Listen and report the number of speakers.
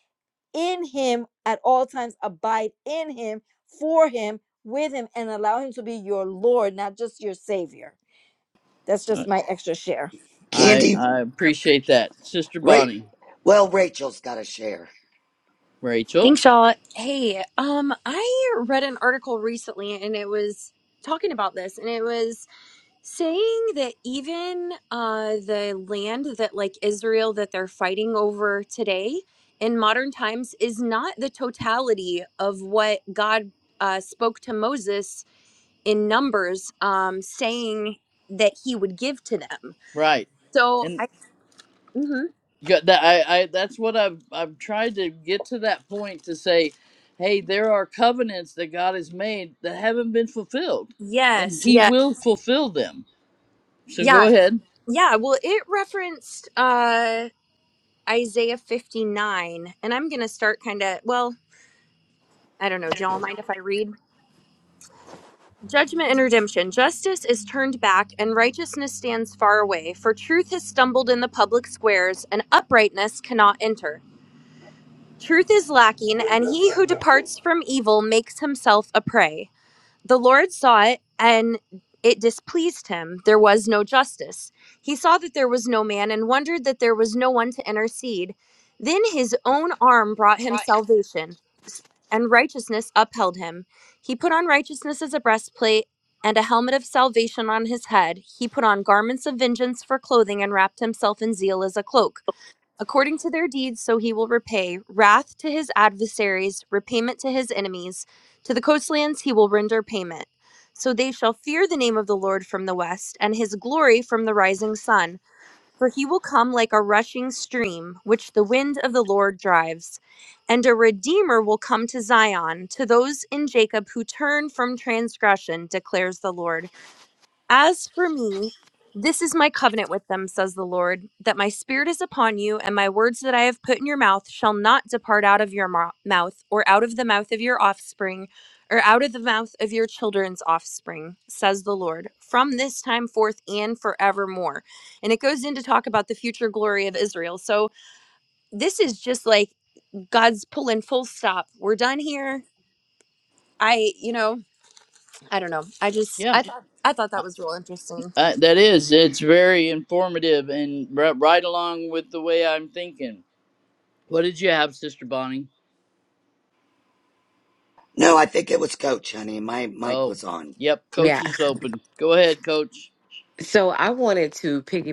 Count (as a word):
five